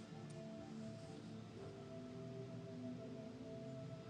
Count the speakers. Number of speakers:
0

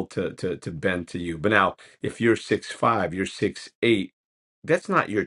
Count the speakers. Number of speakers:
1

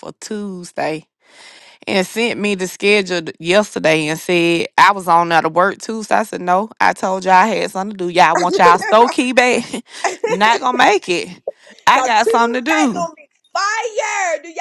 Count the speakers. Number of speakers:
2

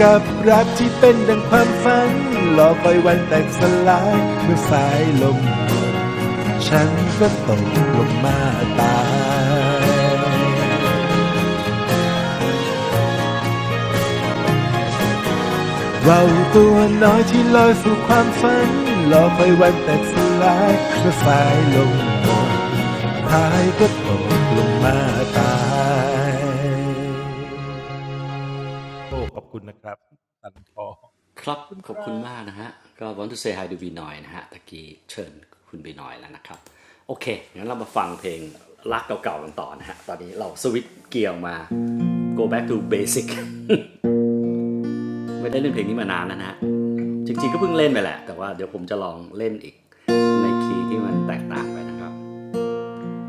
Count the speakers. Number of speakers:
2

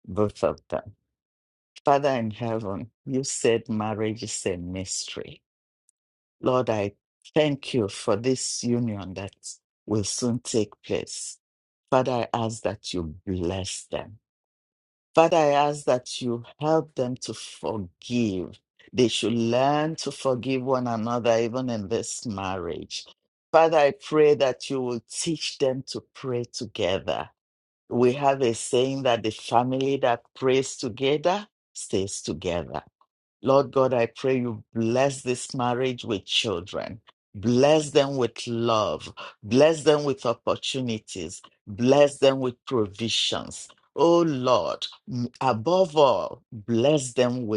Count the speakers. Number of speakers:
1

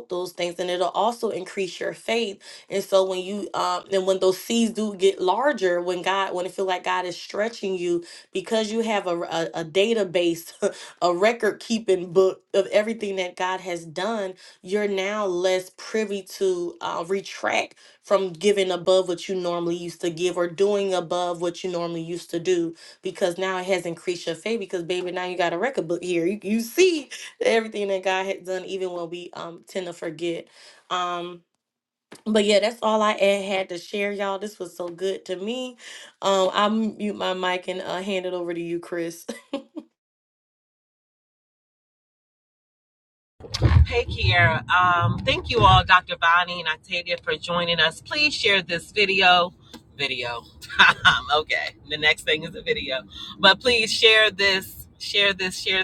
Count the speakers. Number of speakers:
2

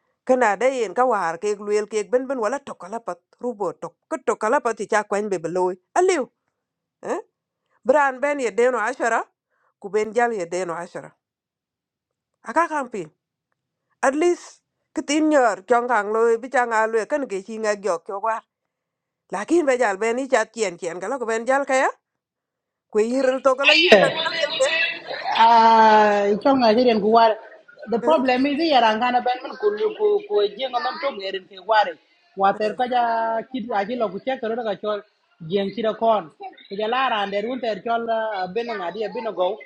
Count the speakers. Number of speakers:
2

